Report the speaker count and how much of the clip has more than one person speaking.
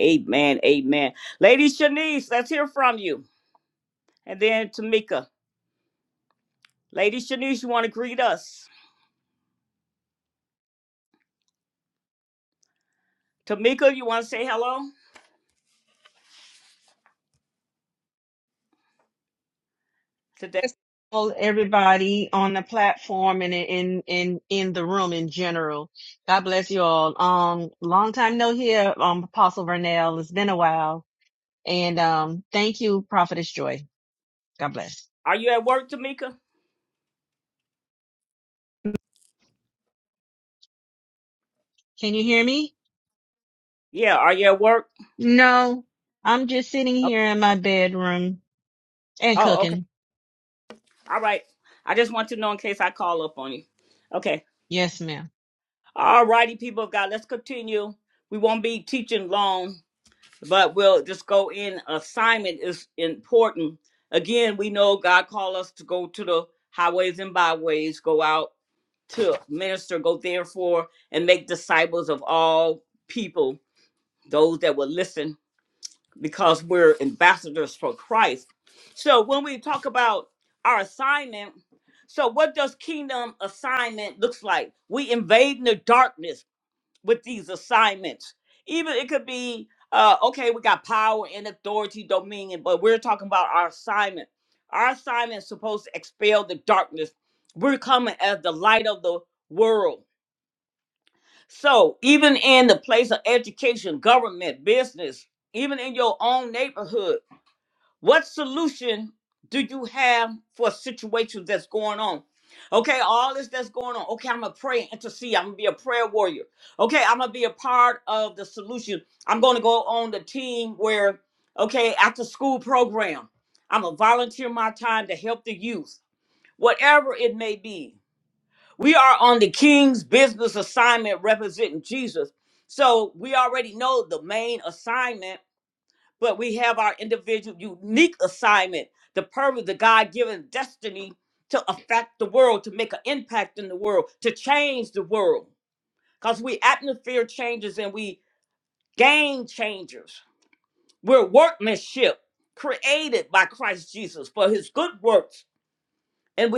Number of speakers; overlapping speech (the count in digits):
2, under 1%